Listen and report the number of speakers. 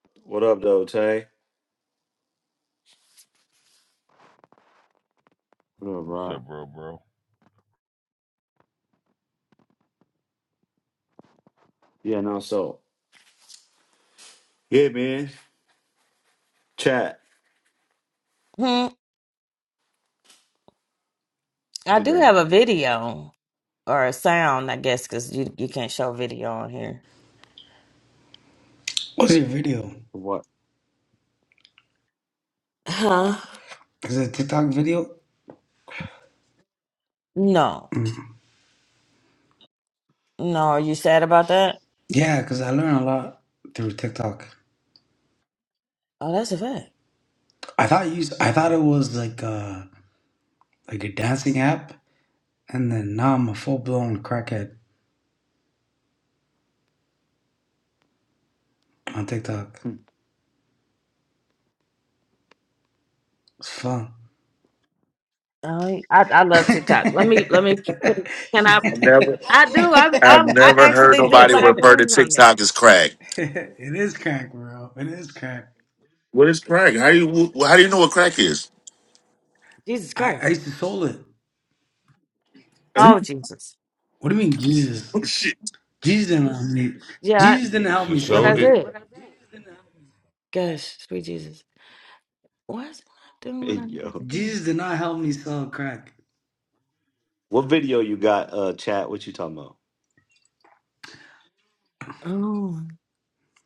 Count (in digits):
5